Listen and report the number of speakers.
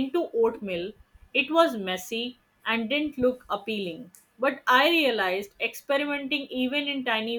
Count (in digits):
1